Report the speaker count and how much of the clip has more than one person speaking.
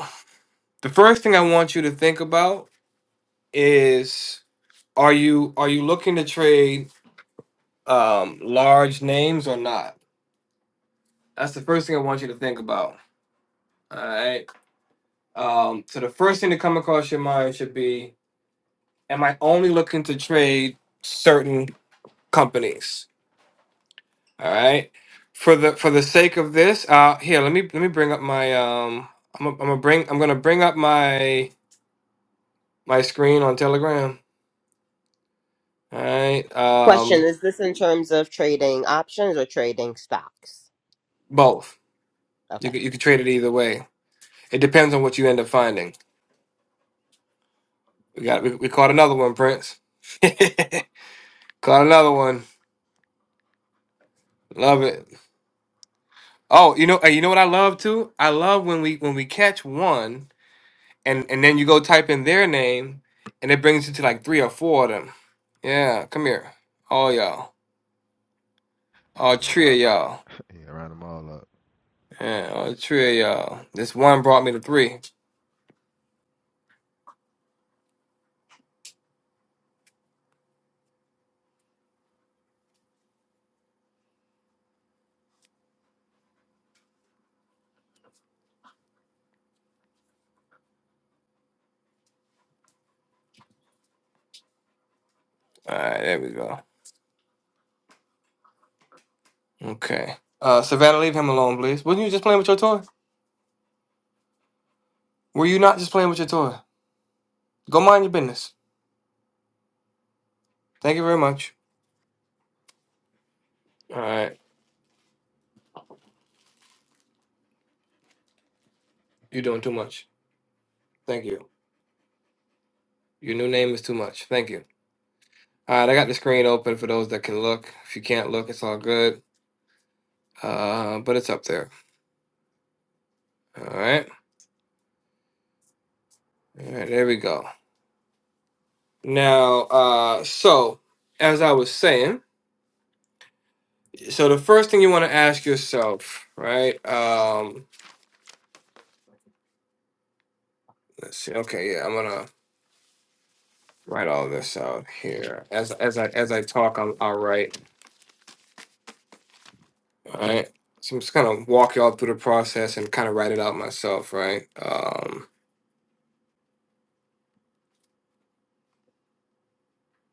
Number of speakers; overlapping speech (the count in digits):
3, under 1%